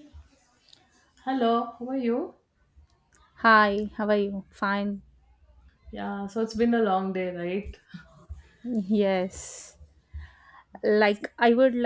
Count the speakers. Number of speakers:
two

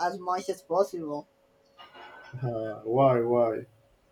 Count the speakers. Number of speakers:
two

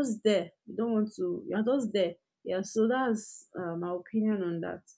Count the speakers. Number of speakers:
one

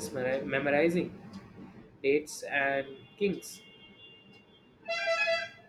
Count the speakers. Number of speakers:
one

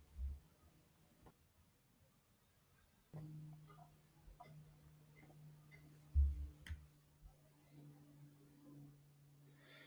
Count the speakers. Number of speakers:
zero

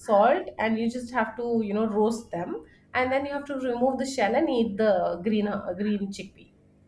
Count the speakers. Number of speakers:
one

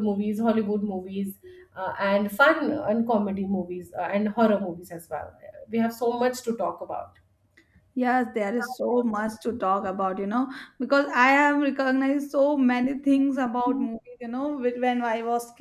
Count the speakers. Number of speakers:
two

